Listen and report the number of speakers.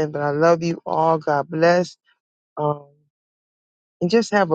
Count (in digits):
1